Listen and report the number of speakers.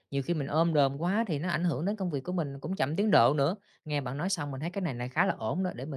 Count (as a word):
one